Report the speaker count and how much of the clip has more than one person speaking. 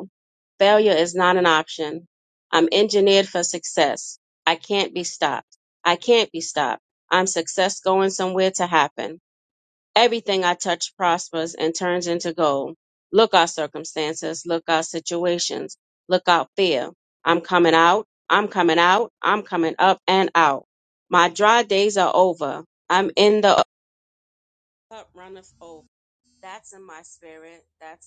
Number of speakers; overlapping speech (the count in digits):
1, no overlap